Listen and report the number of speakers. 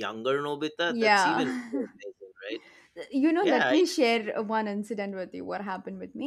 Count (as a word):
two